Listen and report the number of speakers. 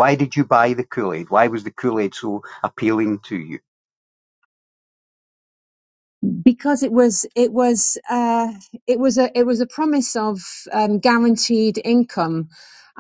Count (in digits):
2